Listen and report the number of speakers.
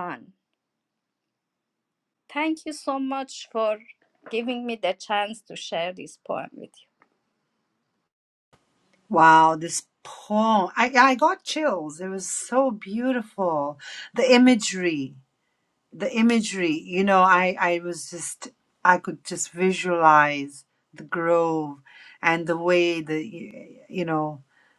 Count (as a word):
two